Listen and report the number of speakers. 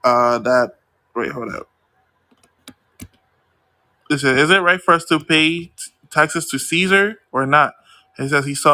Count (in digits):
1